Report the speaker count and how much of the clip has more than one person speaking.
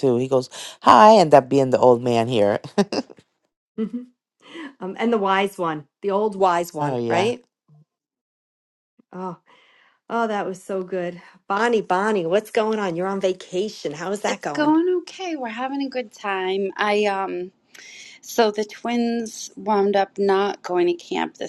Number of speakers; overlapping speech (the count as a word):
three, about 4%